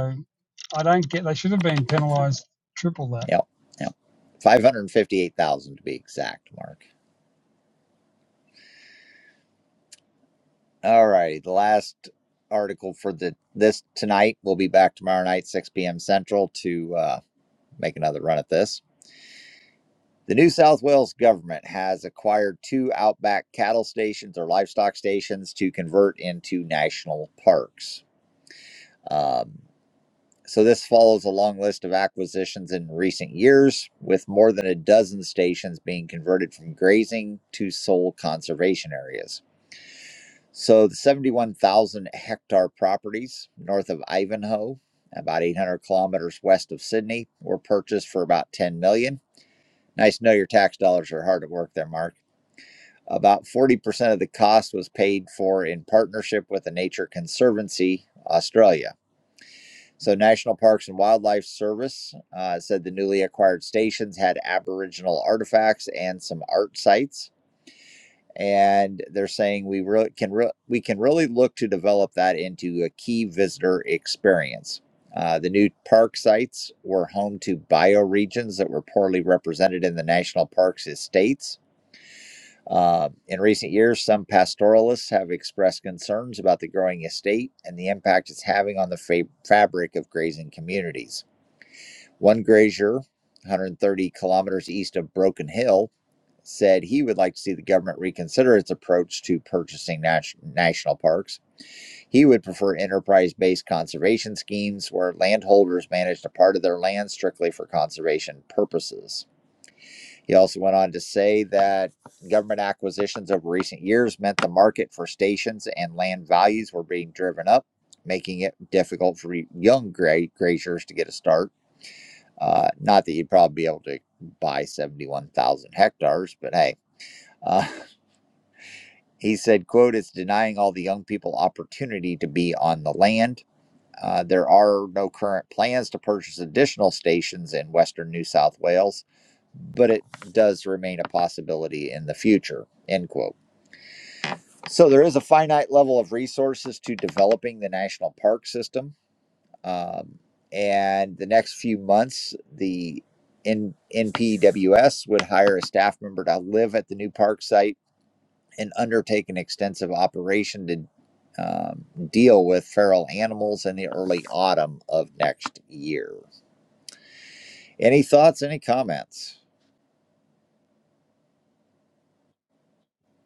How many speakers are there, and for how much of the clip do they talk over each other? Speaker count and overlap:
two, no overlap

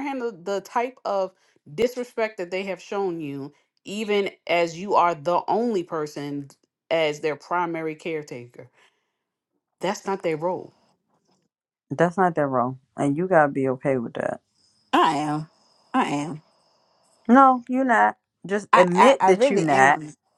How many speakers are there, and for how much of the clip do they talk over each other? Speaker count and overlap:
three, about 6%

